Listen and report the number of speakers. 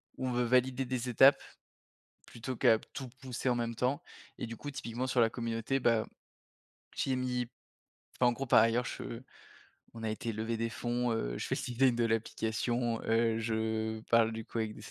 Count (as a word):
one